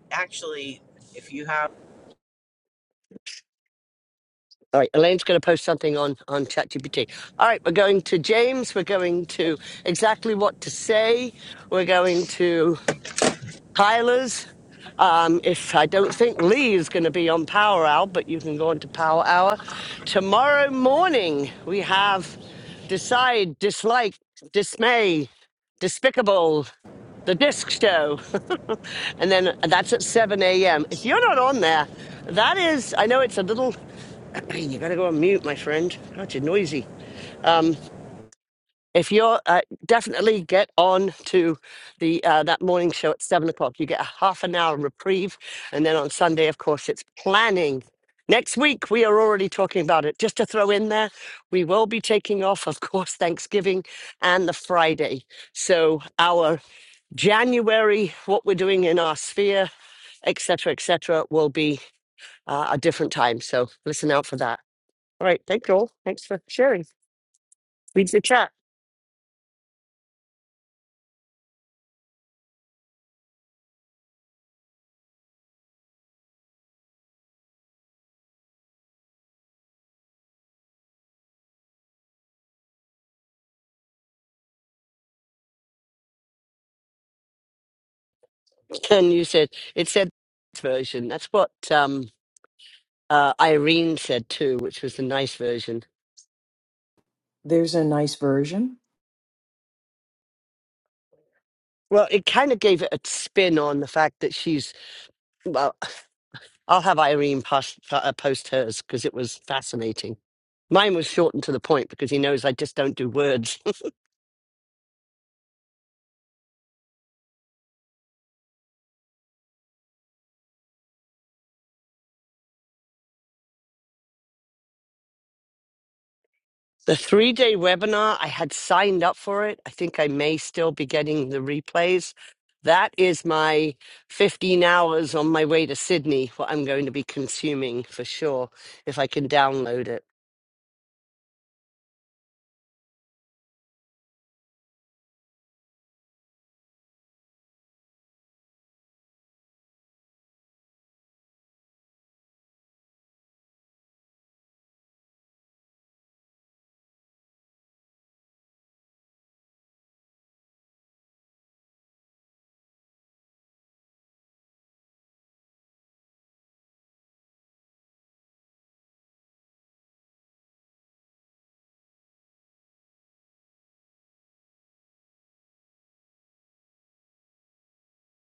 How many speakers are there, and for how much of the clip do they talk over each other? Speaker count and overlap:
3, no overlap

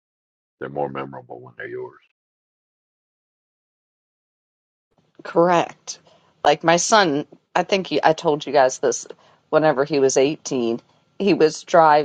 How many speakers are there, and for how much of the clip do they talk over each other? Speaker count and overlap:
2, no overlap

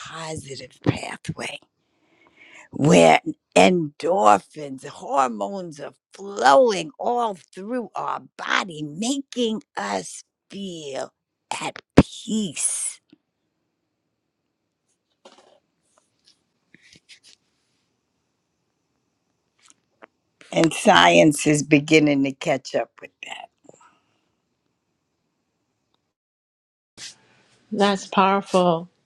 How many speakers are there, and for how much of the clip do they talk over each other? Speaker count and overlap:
2, no overlap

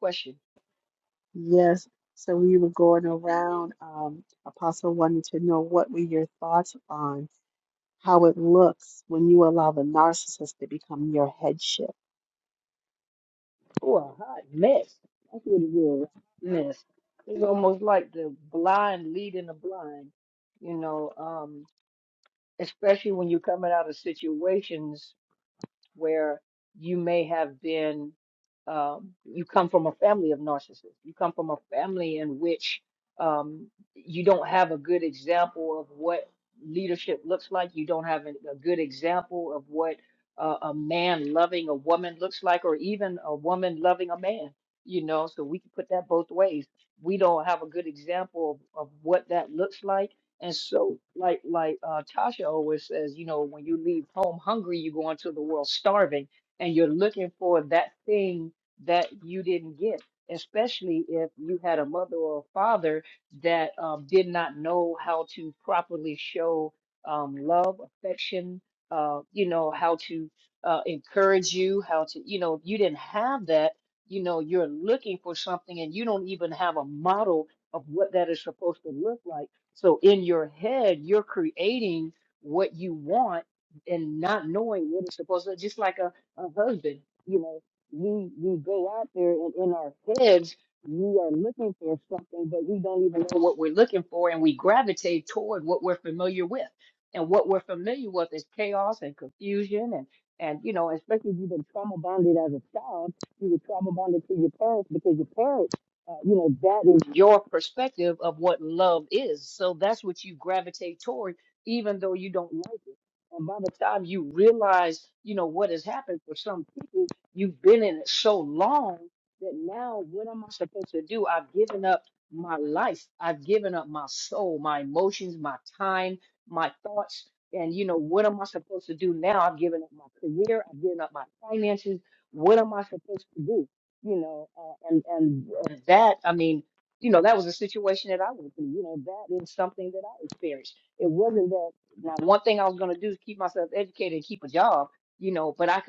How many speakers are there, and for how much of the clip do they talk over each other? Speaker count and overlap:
2, no overlap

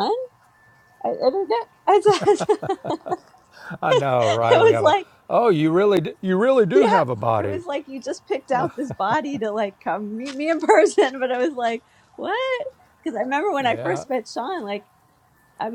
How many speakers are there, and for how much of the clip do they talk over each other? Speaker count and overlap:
2, about 9%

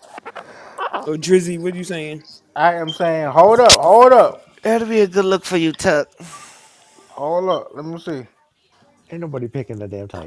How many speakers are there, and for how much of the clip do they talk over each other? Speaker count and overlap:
4, no overlap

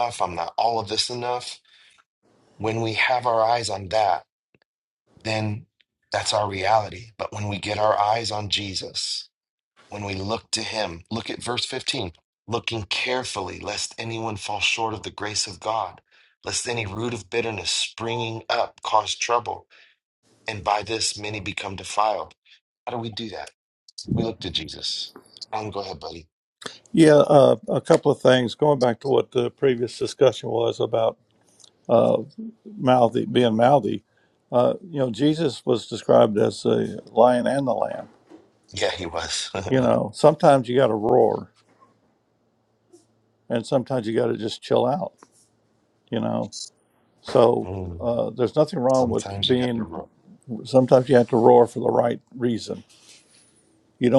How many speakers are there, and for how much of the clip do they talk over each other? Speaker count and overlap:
2, about 2%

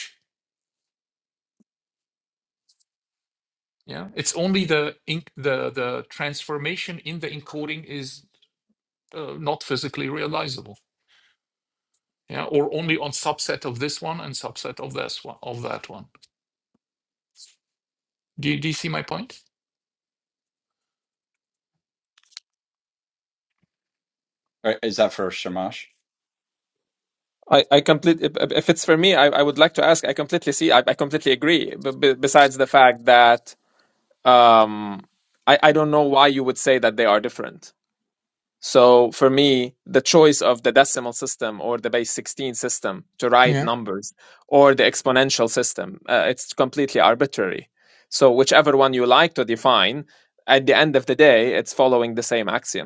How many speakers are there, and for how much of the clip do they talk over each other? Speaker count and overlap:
3, about 1%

